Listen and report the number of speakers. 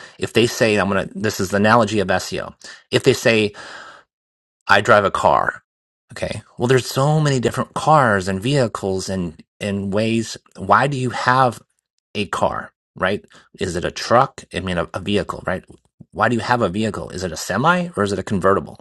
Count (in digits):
1